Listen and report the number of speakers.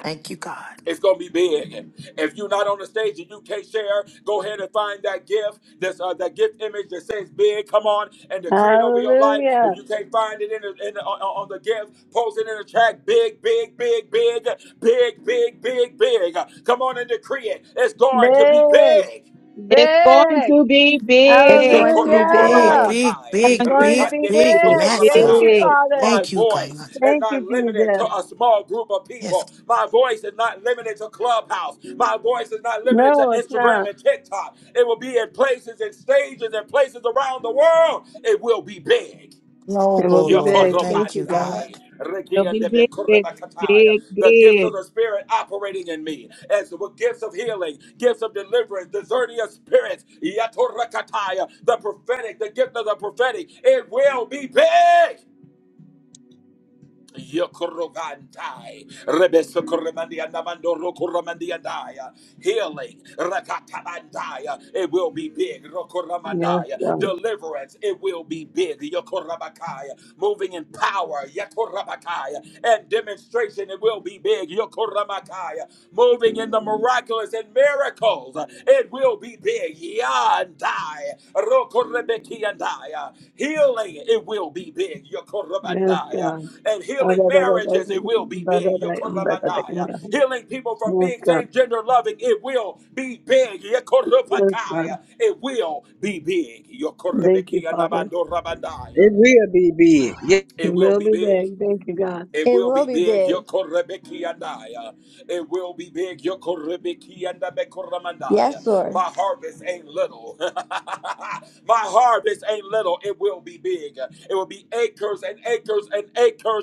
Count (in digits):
6